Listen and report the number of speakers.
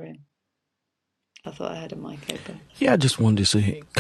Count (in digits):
2